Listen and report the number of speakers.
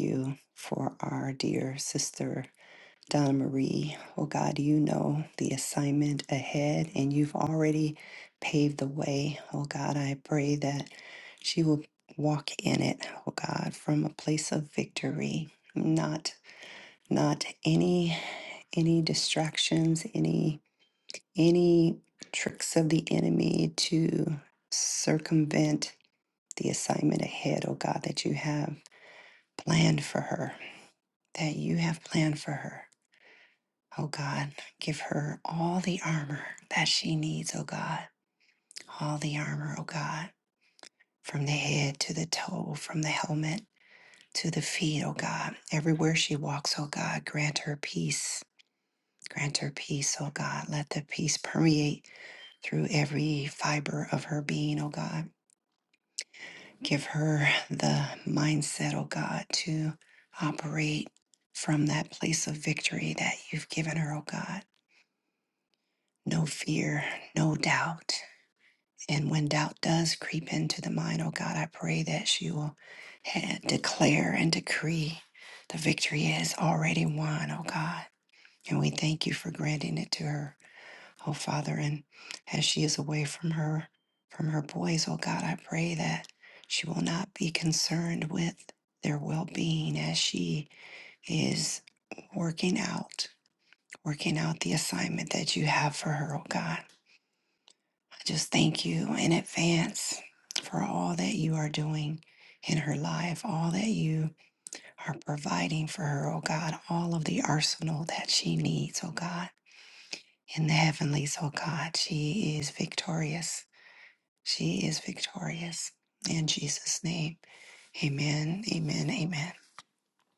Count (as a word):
one